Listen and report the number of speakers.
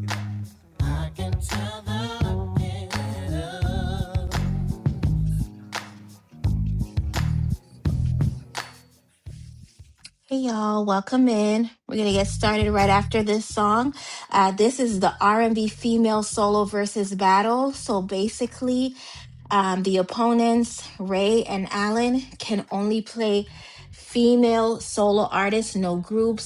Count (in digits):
2